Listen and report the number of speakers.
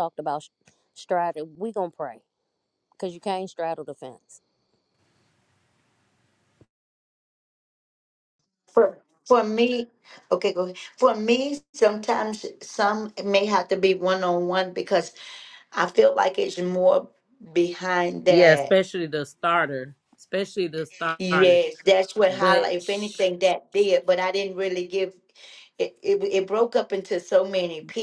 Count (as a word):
three